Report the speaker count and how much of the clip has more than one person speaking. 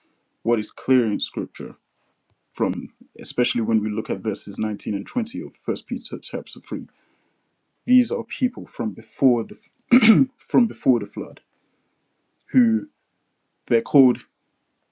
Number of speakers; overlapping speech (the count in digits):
1, no overlap